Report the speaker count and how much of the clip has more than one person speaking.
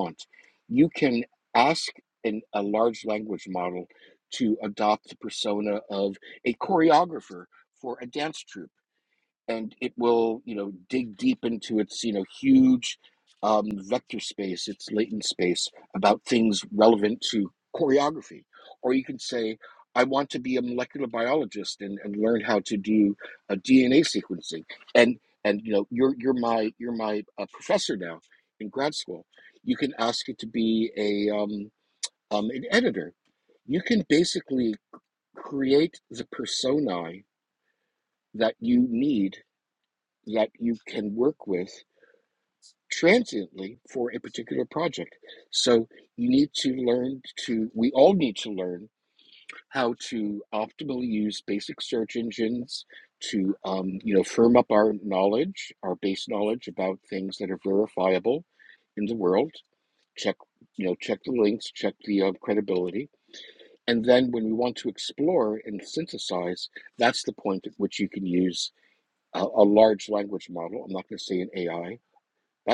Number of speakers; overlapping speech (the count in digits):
1, no overlap